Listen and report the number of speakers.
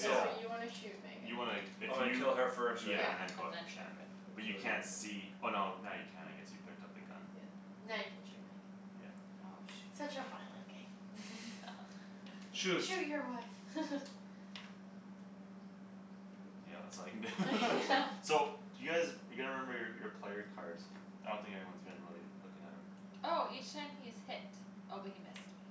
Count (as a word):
four